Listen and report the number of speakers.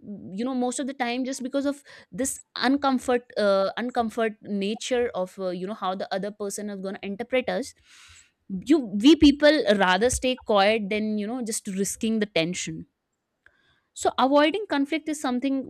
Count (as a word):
one